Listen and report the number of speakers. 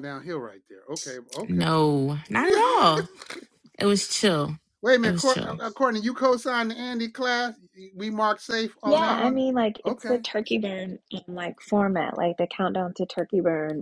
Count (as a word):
three